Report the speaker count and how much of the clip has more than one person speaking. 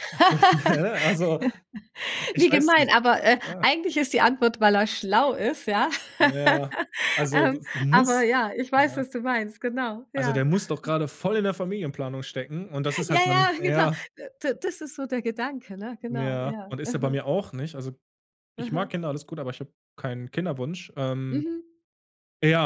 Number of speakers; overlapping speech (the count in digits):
2, about 20%